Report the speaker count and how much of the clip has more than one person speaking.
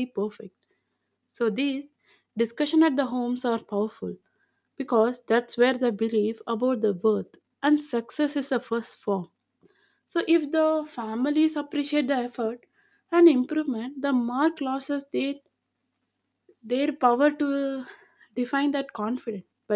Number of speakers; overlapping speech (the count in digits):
1, no overlap